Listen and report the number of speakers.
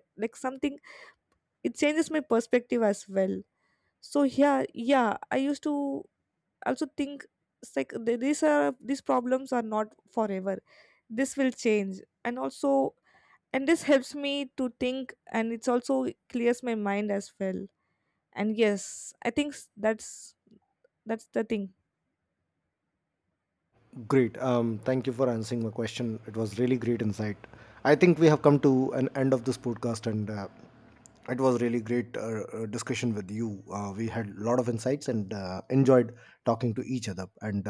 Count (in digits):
2